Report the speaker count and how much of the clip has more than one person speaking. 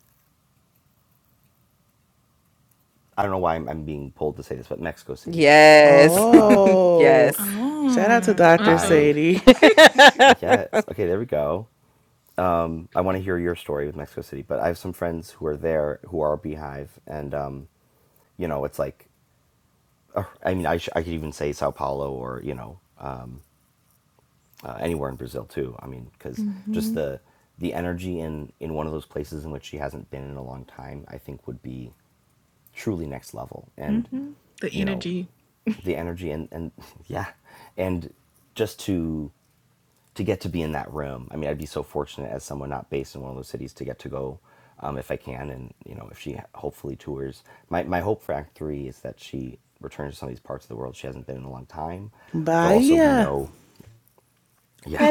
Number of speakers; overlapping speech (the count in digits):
4, about 7%